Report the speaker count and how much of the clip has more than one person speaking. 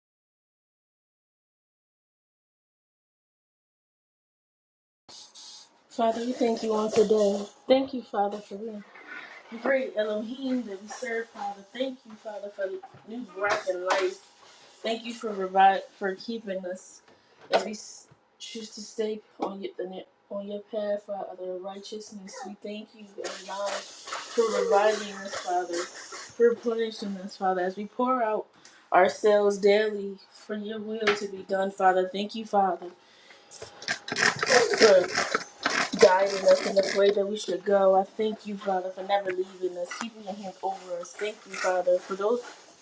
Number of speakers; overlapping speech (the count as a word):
one, no overlap